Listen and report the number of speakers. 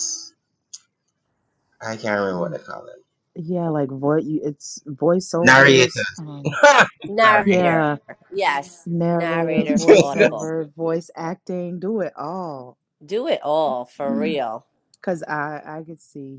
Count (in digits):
3